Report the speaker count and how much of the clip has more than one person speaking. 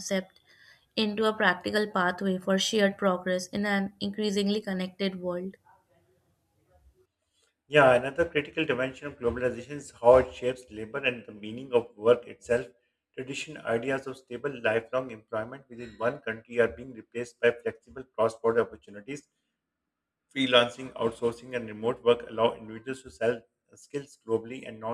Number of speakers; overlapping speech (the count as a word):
two, no overlap